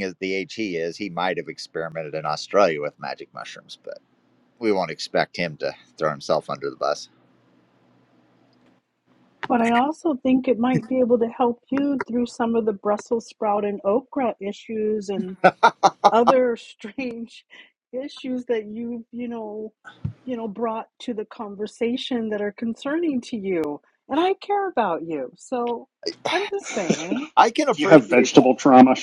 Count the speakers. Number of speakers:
three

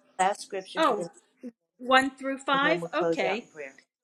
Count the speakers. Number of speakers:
two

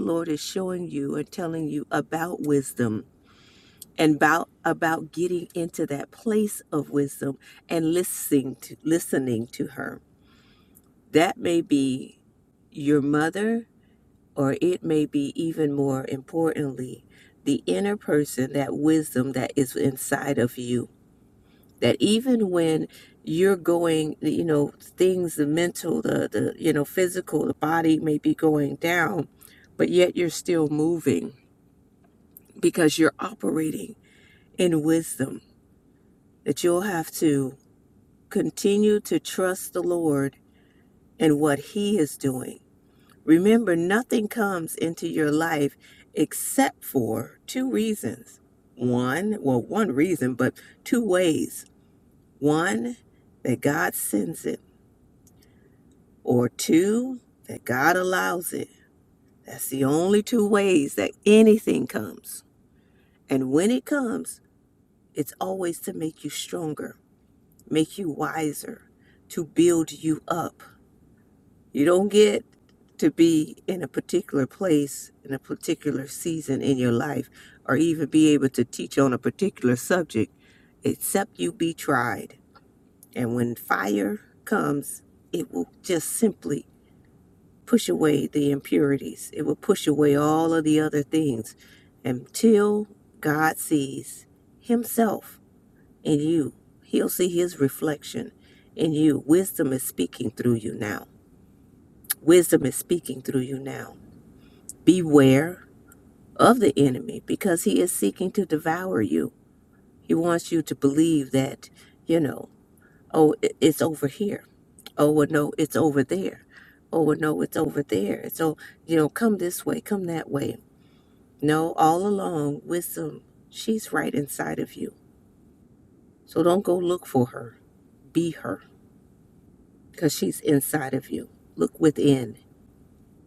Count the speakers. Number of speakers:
one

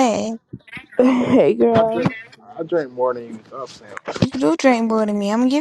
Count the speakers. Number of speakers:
three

